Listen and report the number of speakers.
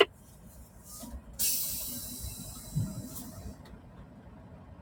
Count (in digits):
0